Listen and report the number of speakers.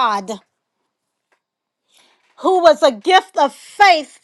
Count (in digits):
1